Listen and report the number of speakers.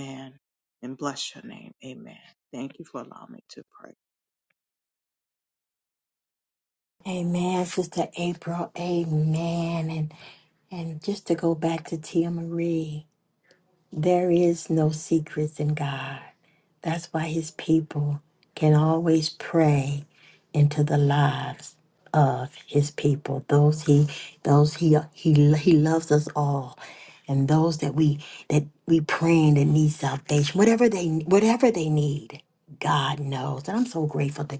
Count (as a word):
two